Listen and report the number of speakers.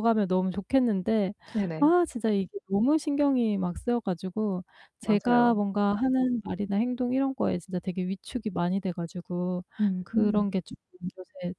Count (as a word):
two